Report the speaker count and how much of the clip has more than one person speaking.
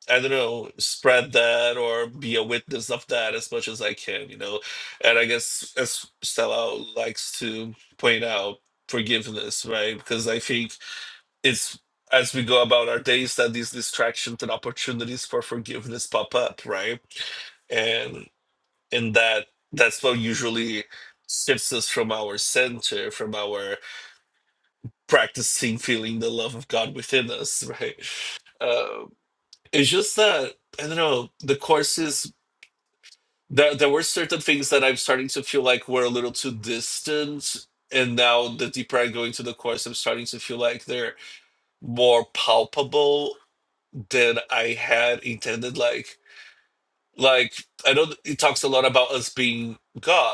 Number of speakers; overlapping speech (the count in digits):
1, no overlap